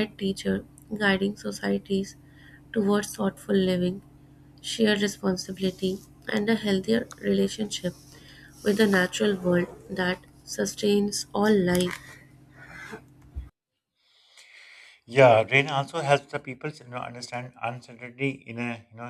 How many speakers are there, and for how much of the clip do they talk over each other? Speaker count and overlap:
two, no overlap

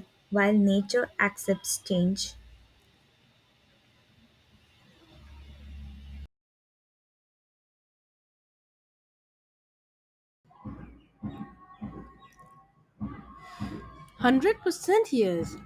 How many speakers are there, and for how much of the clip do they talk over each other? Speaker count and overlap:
two, no overlap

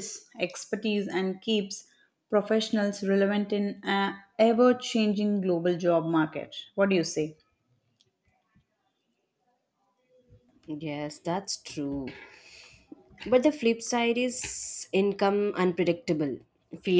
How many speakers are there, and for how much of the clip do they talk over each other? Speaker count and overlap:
two, no overlap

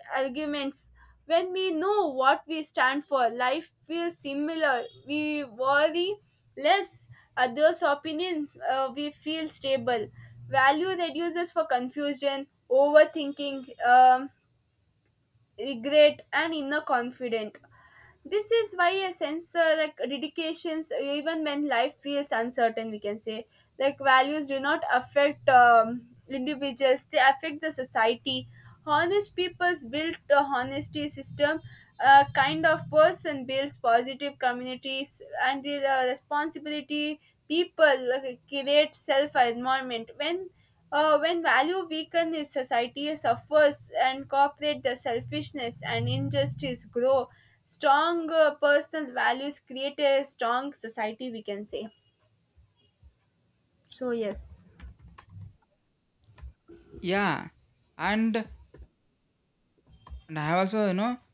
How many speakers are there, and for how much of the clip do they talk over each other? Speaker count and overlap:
two, no overlap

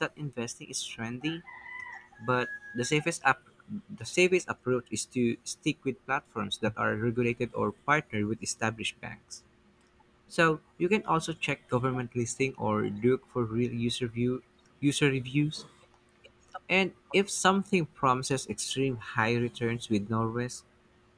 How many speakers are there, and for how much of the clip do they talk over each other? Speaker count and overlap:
one, no overlap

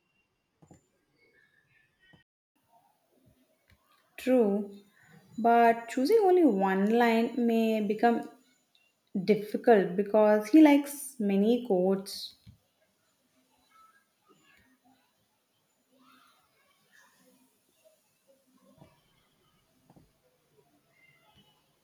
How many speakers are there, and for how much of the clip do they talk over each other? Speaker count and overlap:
one, no overlap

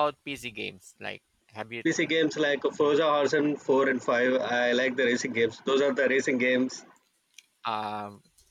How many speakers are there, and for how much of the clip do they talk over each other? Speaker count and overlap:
two, no overlap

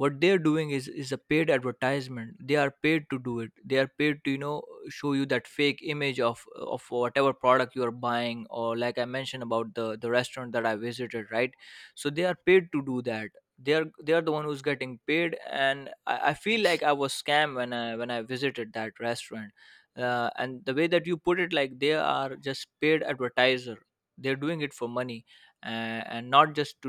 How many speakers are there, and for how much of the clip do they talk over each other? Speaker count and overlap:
one, no overlap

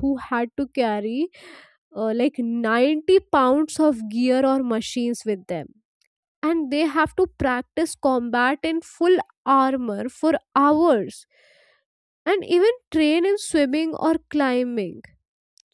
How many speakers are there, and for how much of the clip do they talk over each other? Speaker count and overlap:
one, no overlap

